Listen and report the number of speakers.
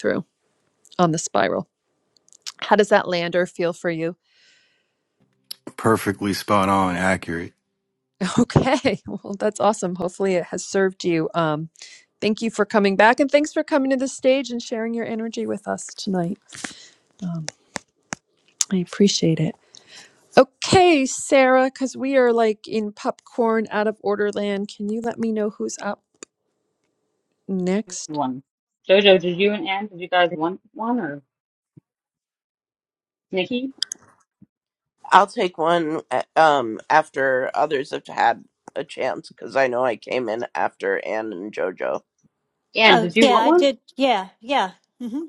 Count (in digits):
5